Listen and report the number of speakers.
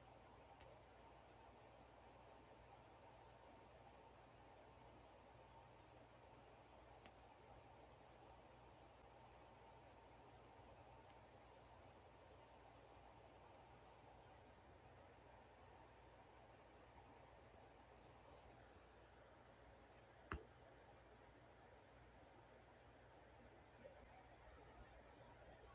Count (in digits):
0